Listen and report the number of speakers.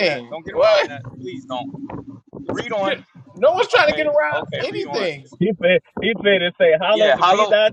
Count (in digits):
3